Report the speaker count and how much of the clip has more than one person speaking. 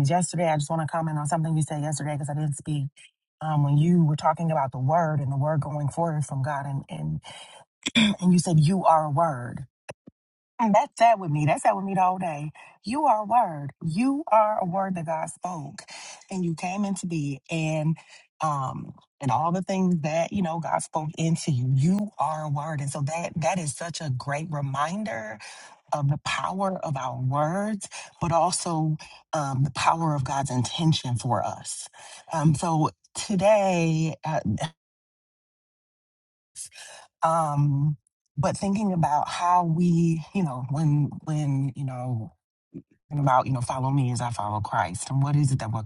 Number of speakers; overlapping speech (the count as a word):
one, no overlap